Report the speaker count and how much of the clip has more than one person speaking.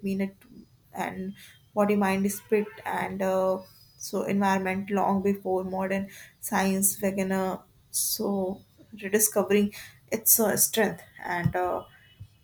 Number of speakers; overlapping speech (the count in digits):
1, no overlap